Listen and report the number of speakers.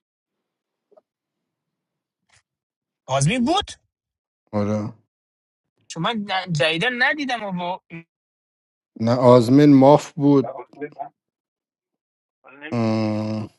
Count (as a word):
two